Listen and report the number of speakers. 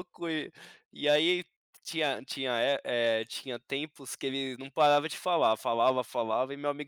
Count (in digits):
1